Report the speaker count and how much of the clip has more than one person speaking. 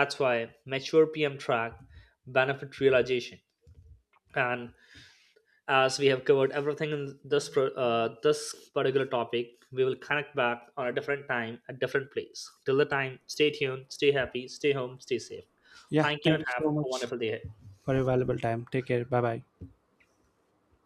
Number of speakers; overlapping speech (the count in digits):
2, about 5%